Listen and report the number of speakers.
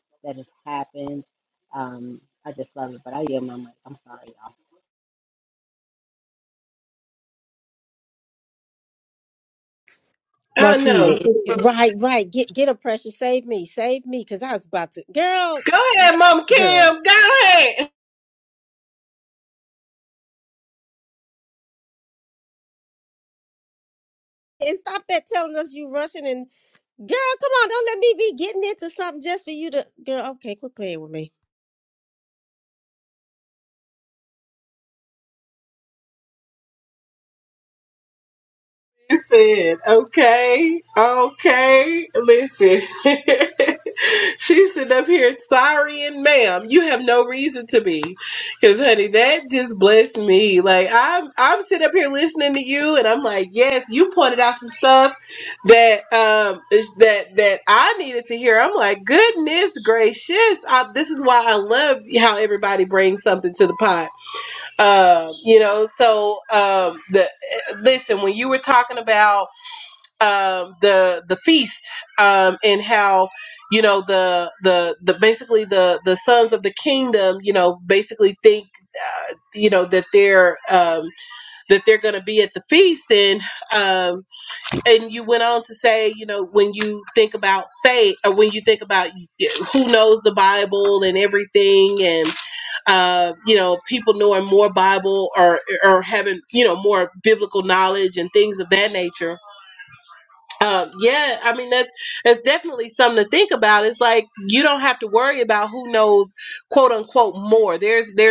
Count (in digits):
3